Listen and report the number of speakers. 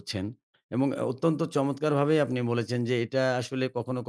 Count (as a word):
one